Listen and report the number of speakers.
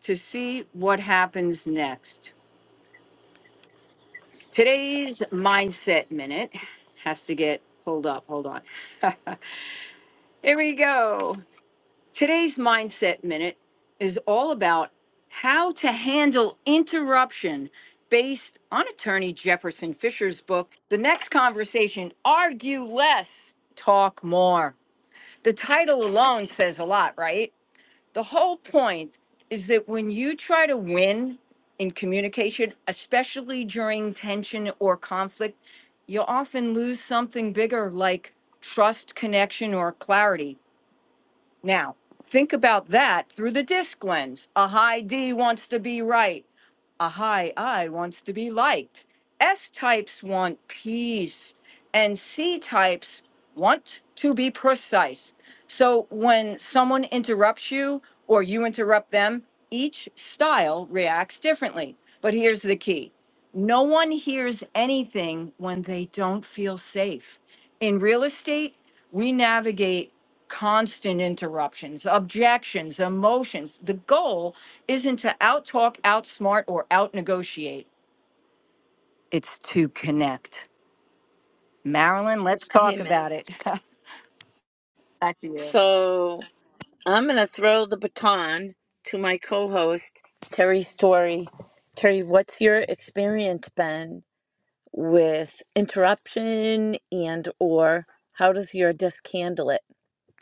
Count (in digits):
2